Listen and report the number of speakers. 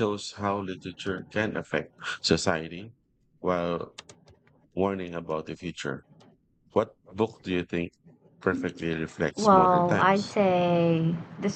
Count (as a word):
two